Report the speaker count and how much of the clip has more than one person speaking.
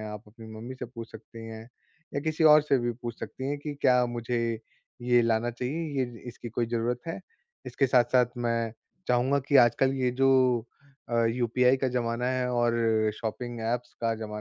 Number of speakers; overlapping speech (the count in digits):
1, no overlap